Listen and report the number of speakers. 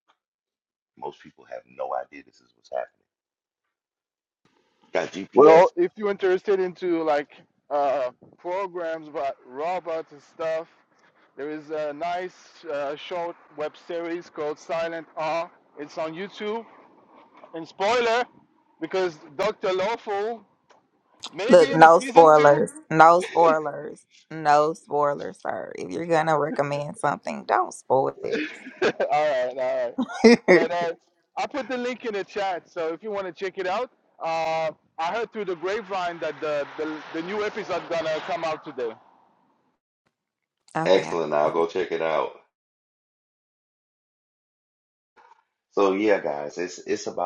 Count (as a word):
three